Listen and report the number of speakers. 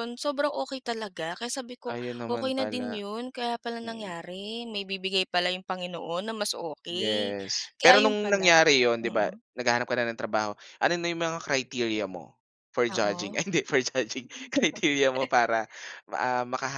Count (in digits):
2